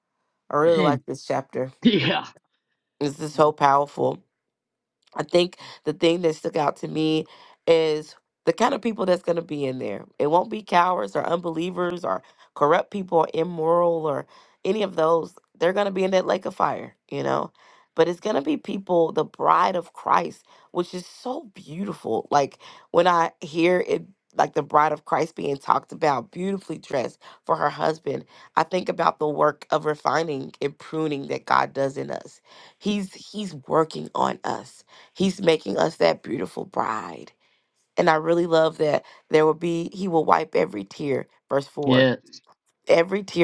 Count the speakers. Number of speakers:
2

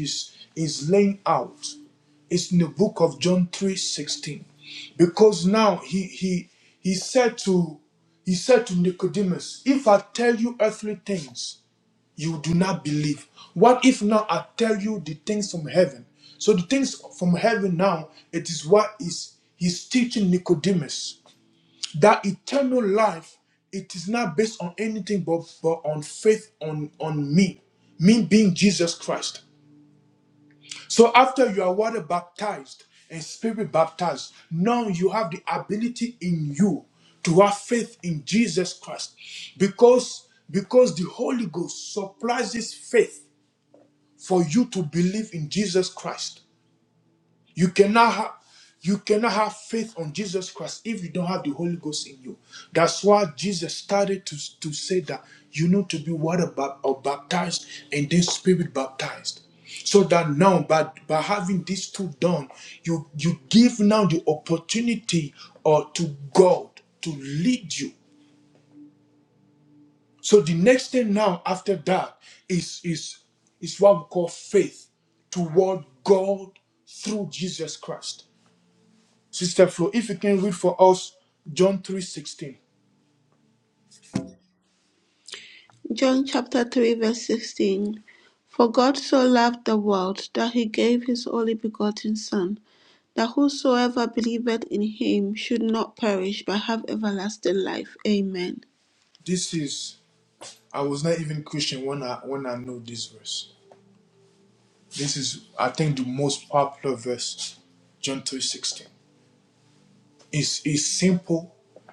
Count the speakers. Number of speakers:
2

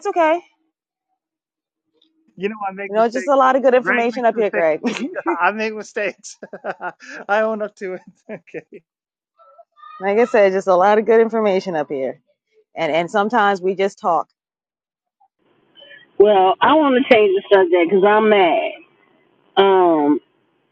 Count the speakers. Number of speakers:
3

